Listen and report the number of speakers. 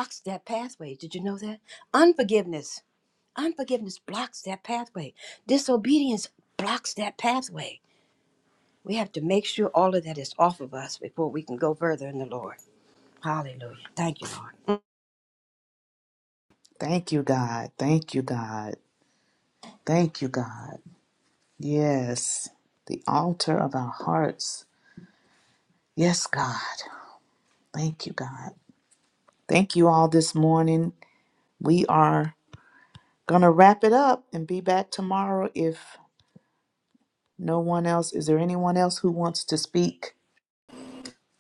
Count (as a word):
two